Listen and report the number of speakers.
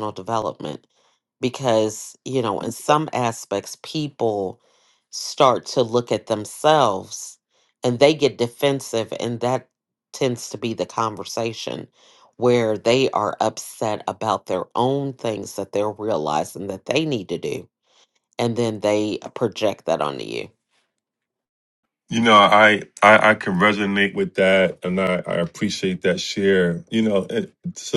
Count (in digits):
2